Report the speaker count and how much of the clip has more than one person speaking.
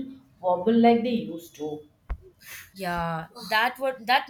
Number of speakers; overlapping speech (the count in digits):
2, no overlap